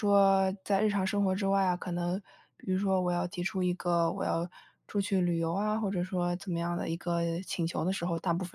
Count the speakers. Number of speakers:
1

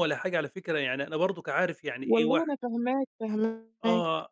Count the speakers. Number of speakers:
2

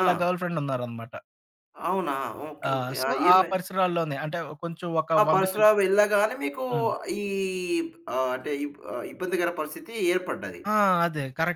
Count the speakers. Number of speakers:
2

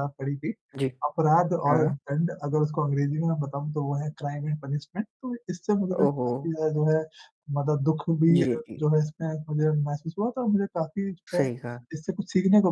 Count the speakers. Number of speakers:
2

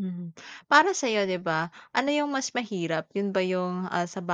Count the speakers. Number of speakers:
1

